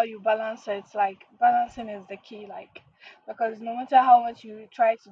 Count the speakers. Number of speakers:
1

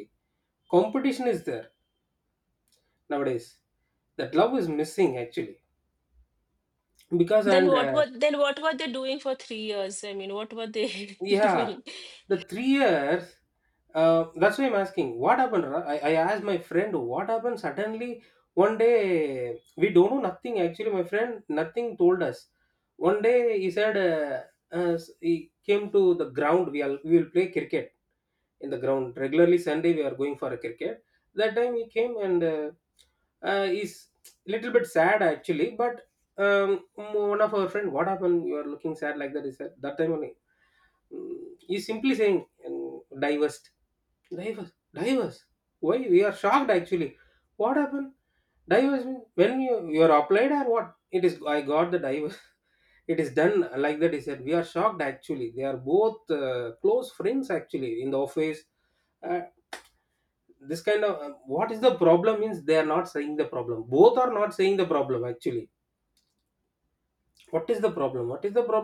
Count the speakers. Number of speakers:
2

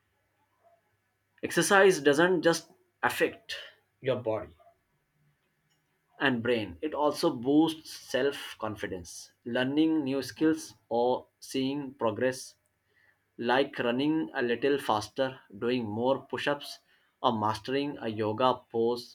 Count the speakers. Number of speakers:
1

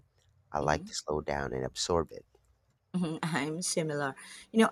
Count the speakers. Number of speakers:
2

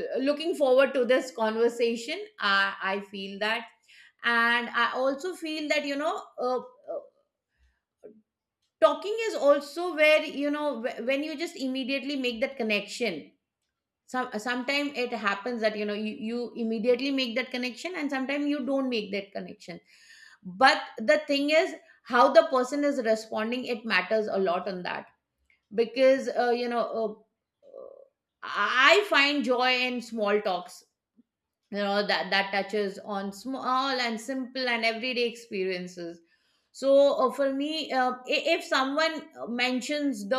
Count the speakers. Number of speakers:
1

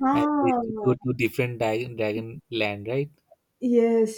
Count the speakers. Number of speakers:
2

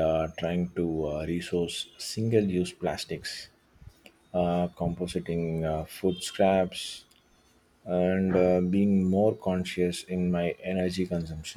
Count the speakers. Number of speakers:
1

